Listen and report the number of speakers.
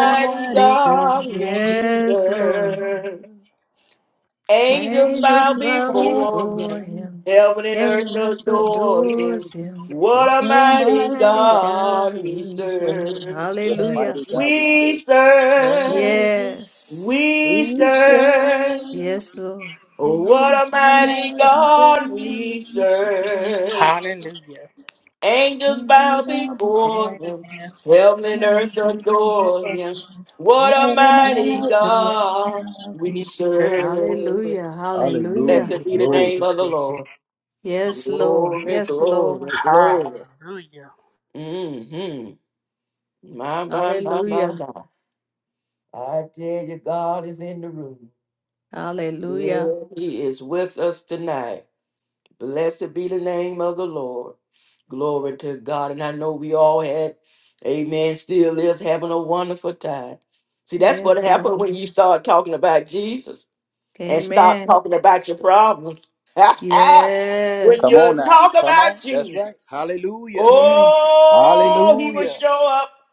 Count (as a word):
four